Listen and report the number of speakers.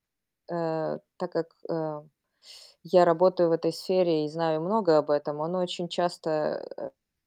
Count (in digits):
1